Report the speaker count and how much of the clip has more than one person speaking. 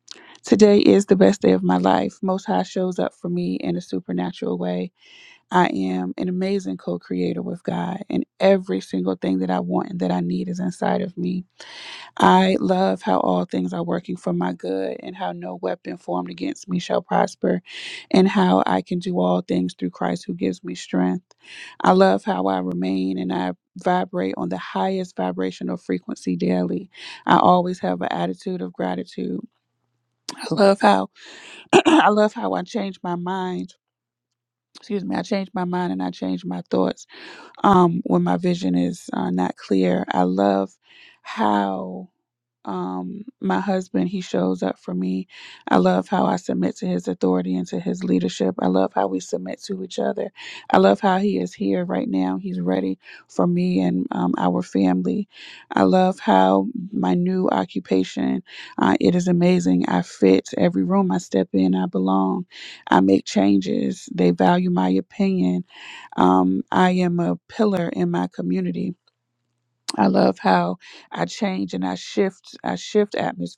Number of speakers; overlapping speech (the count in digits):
1, no overlap